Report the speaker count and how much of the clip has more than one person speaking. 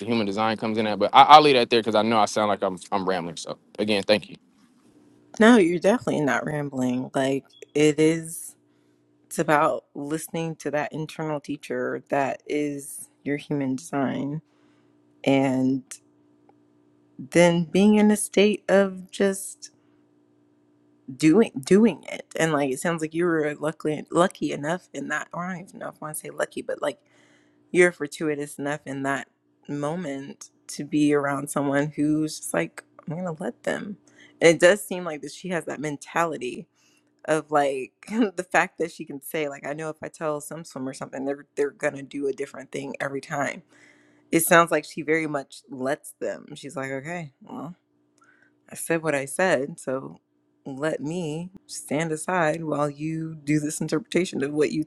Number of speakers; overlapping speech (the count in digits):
2, no overlap